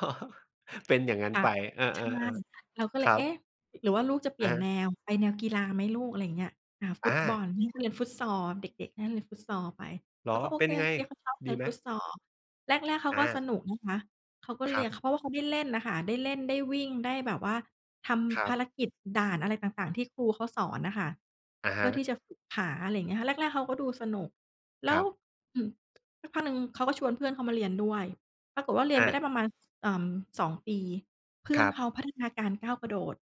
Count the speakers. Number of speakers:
2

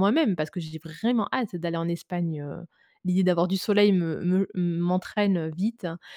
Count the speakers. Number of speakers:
1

